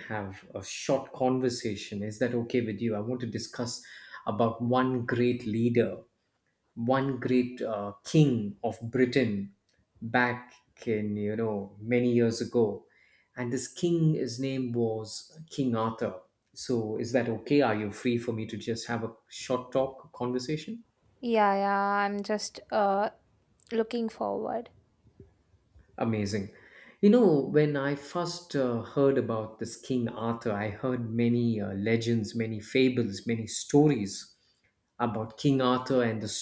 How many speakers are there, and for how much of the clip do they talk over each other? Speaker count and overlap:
2, no overlap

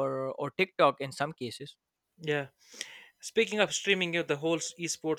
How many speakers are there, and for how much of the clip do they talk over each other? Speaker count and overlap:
2, no overlap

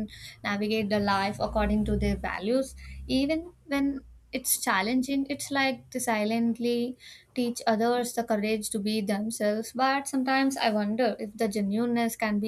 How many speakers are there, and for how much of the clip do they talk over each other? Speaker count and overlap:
1, no overlap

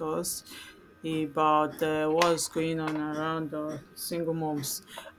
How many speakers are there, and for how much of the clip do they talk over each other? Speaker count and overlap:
1, no overlap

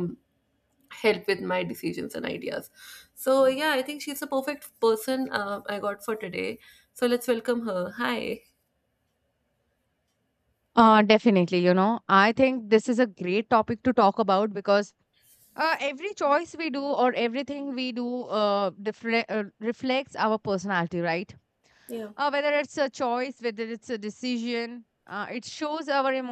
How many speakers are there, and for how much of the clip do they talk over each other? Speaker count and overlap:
2, no overlap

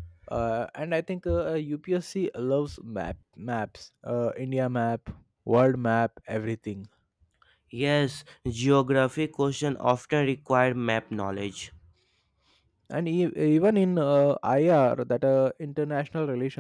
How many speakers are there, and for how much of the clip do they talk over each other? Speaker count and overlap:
2, no overlap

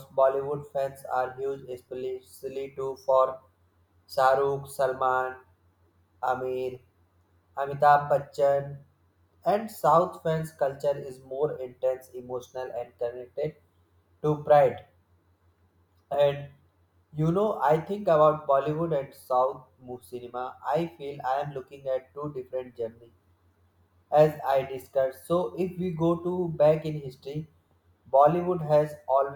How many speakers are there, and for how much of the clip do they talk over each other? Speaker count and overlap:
1, no overlap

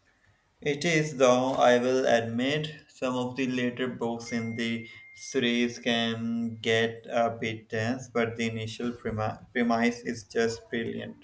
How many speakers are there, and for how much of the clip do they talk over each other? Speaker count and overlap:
1, no overlap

